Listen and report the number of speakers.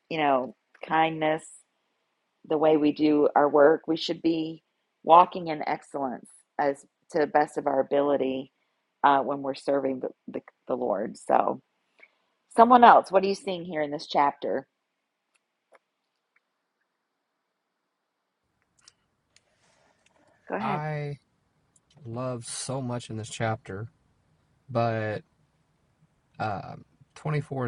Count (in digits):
2